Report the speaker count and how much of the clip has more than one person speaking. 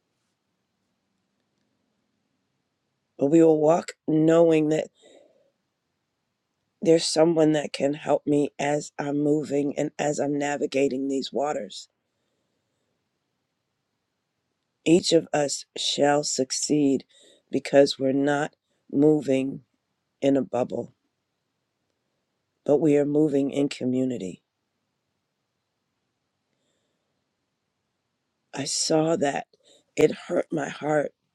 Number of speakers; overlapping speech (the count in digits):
1, no overlap